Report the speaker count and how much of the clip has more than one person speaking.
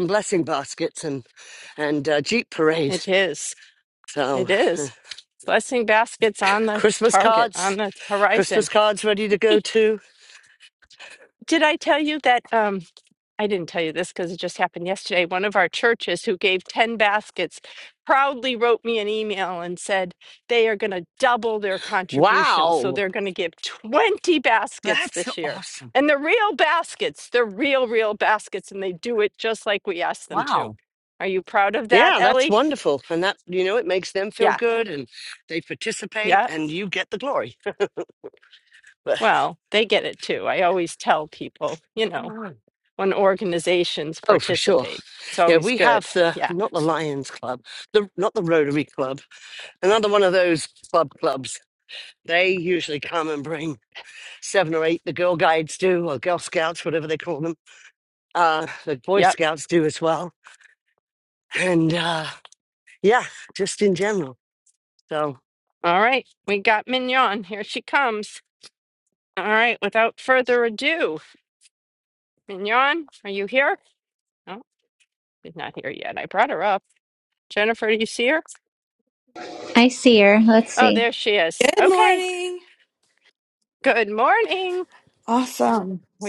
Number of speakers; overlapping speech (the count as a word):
four, about 9%